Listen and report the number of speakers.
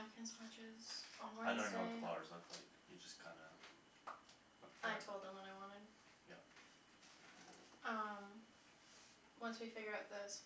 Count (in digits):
2